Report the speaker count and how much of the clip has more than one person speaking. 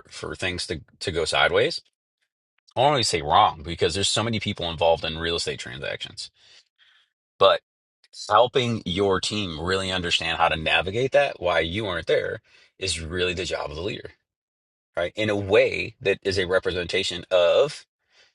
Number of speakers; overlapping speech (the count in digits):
1, no overlap